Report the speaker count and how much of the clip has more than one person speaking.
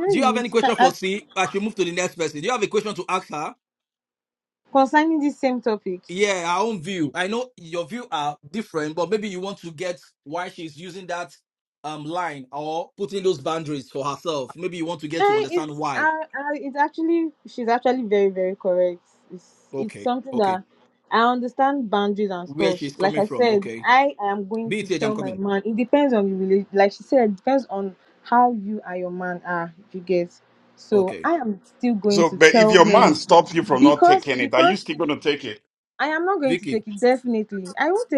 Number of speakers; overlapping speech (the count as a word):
three, about 19%